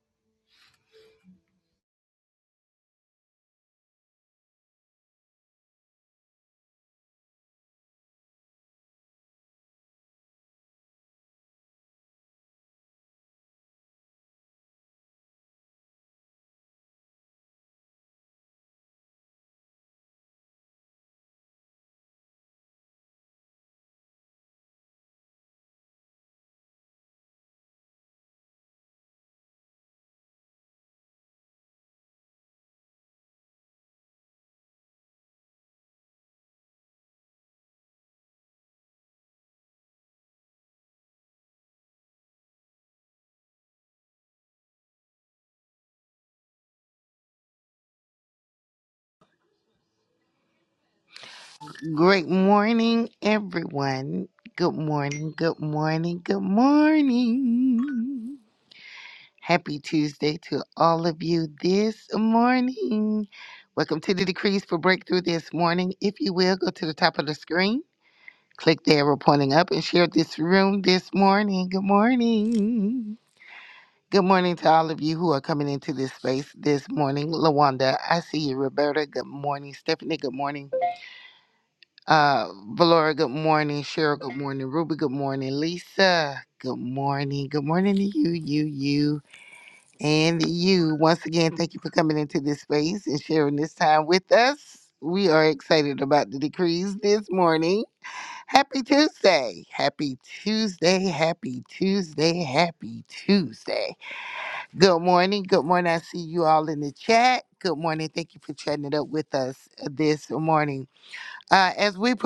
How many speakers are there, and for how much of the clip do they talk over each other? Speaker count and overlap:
one, no overlap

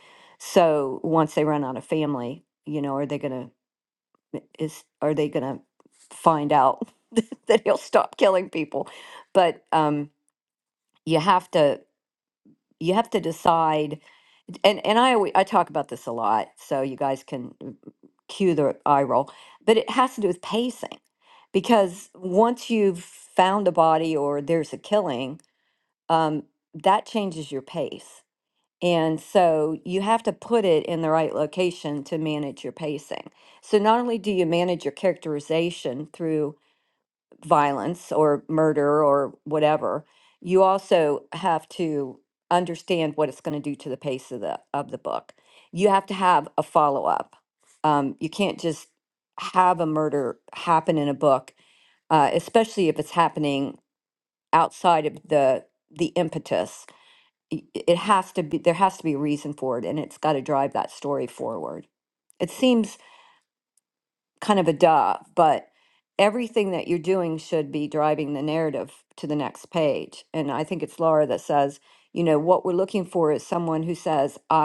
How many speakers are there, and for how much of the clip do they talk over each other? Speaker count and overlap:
one, no overlap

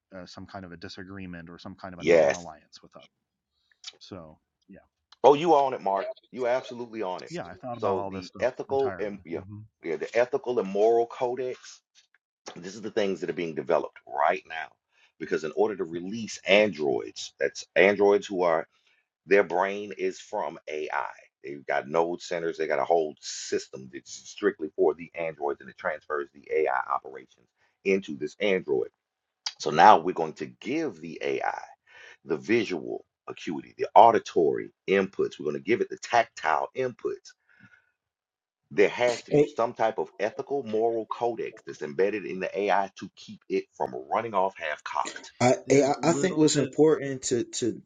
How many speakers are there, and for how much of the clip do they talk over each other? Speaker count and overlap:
three, about 7%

